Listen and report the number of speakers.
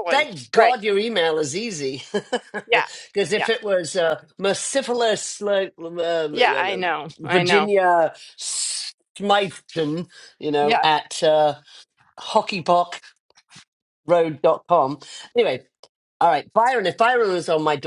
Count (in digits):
2